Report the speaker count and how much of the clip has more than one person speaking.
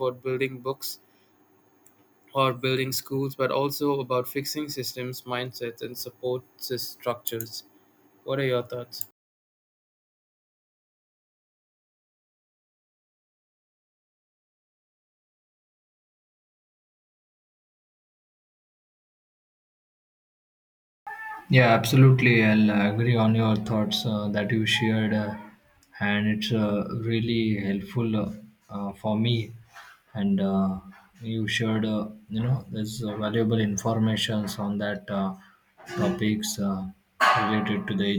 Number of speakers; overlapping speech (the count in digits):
2, no overlap